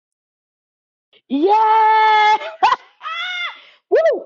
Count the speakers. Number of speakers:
1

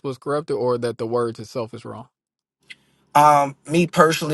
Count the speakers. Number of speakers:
2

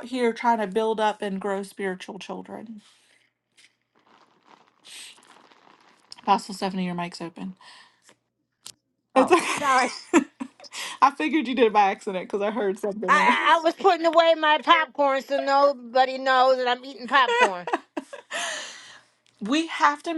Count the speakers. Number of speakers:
2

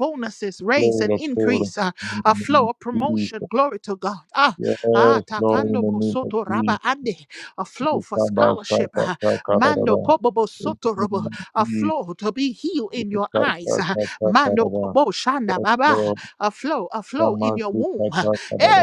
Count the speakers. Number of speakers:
2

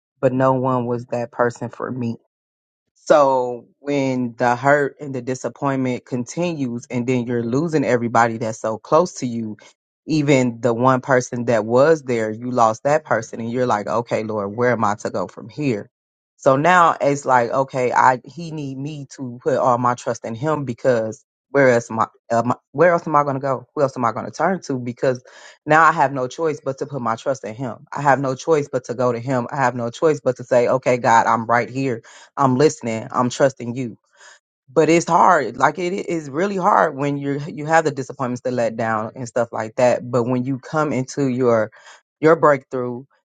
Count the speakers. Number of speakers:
1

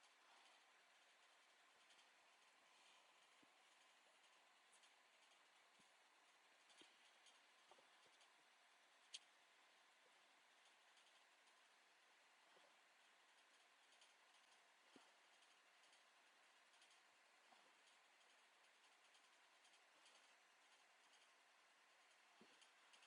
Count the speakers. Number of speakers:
0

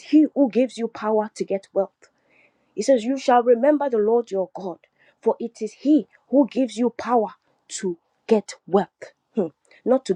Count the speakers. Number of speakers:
1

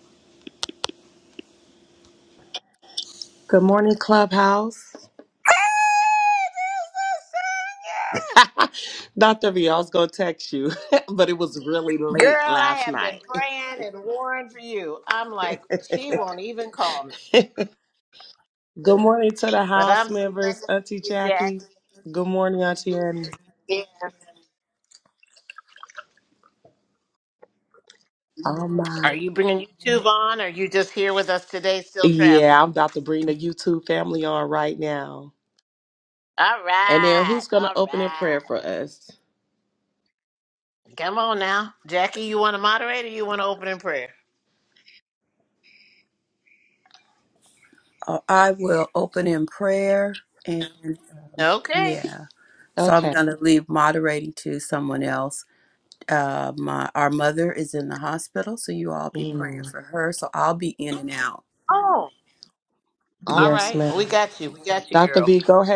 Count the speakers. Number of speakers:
3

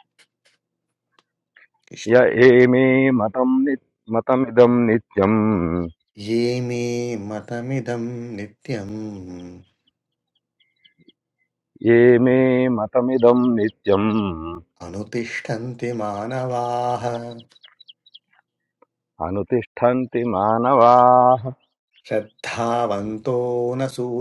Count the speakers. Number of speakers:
2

